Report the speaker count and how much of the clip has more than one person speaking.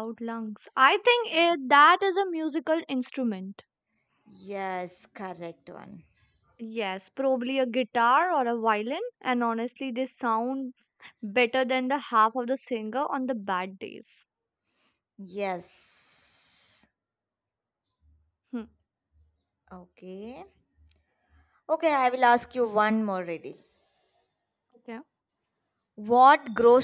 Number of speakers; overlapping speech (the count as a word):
two, under 1%